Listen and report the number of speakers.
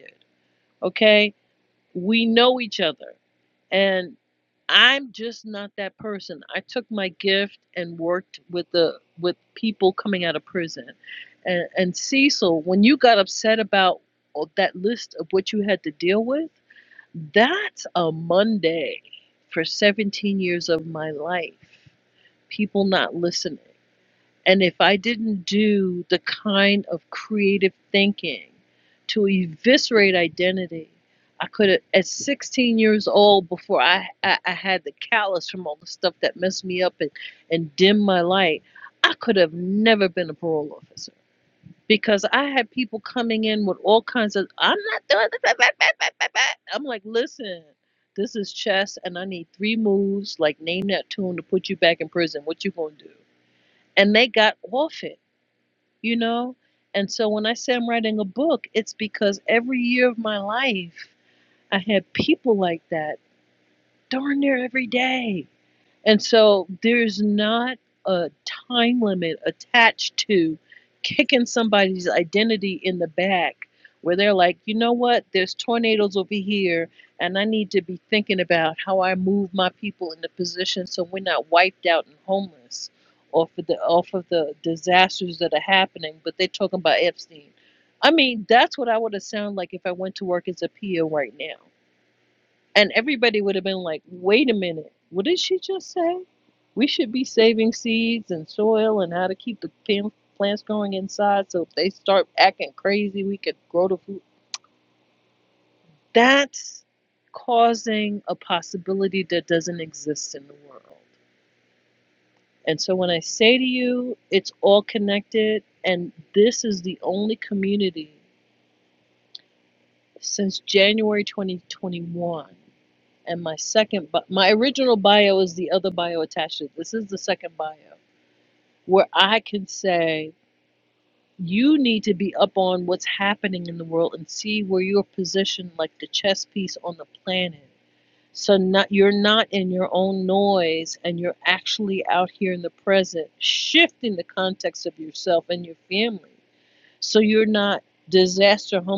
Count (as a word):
one